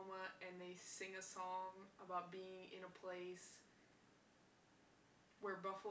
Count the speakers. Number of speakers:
one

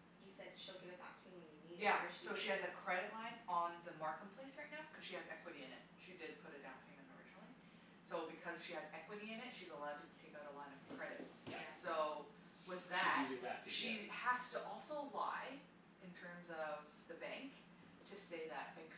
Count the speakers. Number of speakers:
three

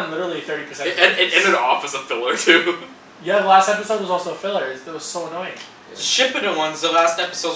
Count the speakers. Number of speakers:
three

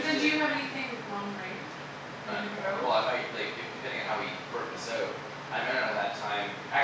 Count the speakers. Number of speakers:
two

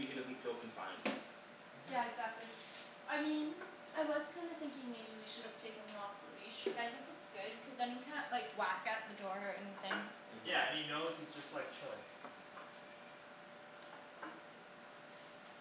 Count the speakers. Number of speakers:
three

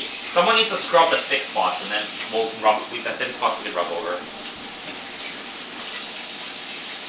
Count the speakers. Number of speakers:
one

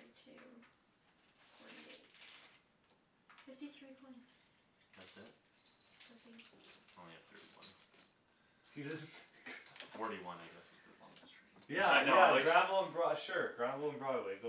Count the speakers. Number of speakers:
three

